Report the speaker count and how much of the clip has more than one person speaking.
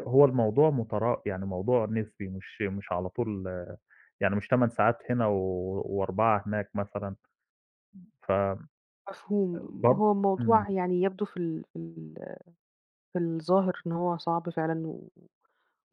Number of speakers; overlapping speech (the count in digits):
2, about 4%